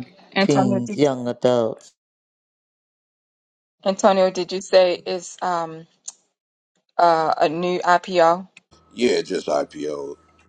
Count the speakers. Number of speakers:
three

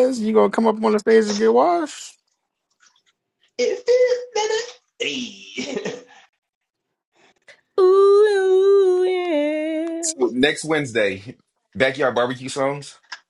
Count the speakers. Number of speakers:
four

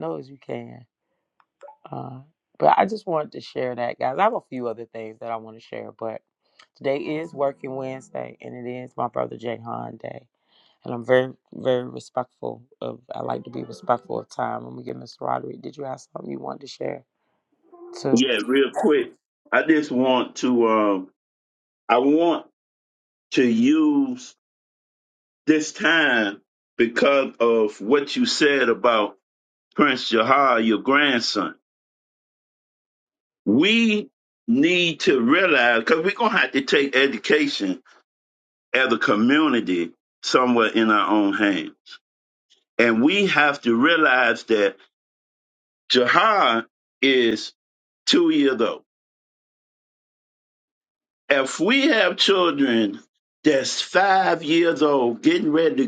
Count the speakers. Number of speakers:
two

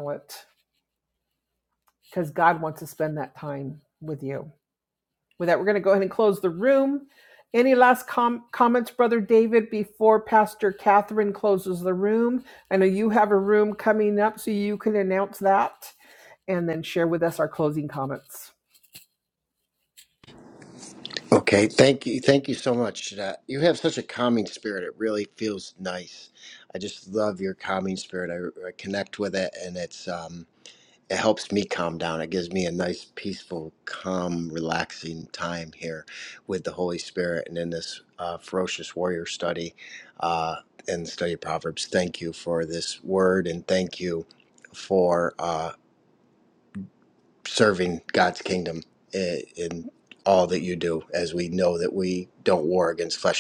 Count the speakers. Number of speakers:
two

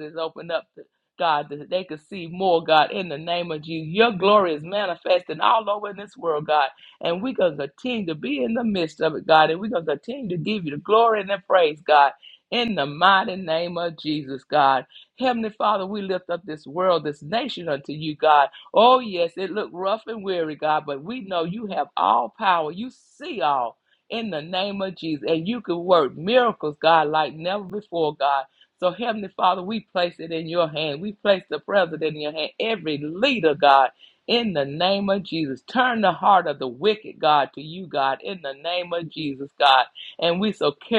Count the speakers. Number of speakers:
one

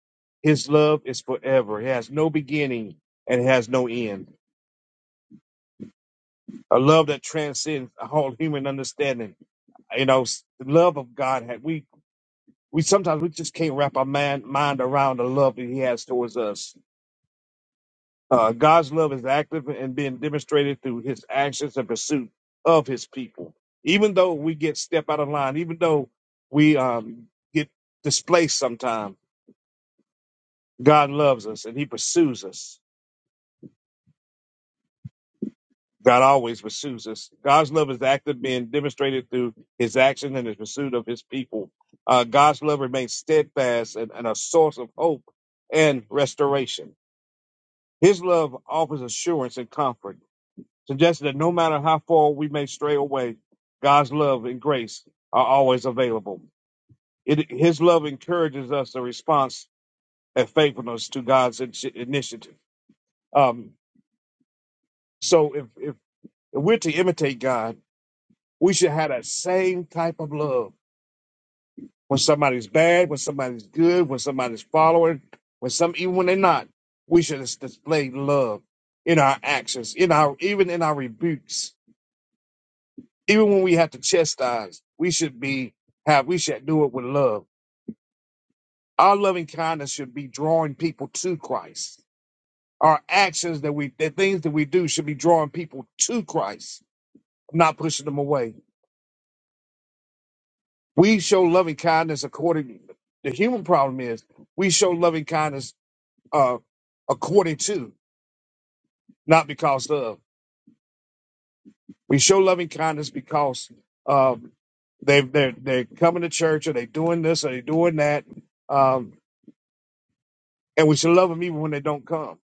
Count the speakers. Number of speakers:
one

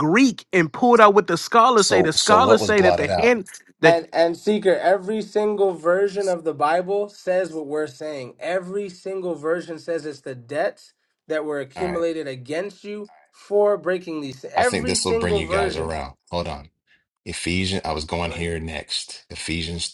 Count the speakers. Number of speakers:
three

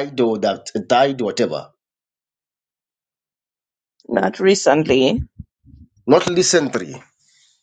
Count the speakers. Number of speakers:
two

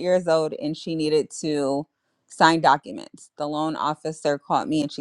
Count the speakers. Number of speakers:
one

